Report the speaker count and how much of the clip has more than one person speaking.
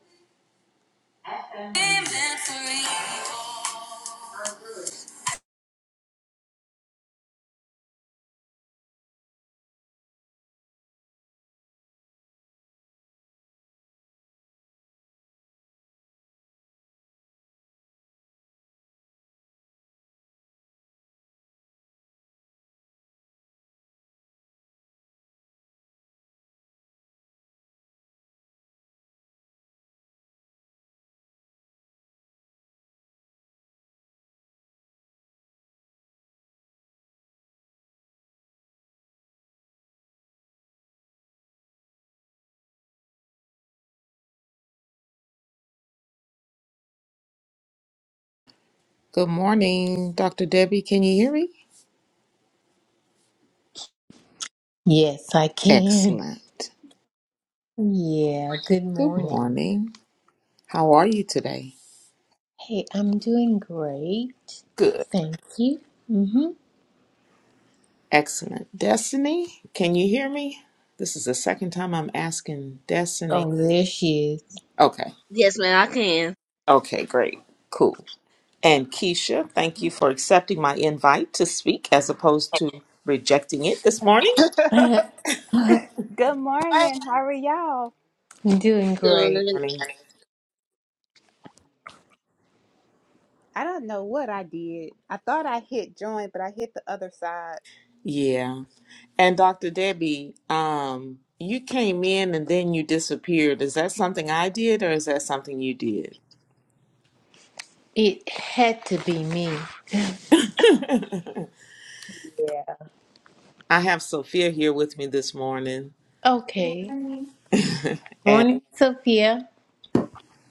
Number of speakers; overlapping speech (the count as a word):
four, about 2%